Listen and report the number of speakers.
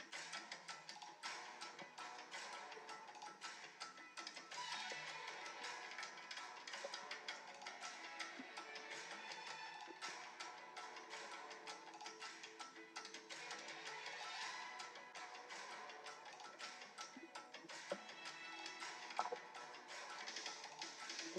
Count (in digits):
0